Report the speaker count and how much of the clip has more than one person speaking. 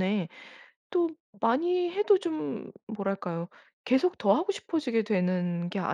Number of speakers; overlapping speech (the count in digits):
1, no overlap